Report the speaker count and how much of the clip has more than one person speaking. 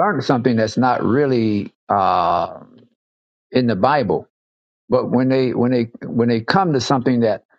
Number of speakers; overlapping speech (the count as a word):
one, no overlap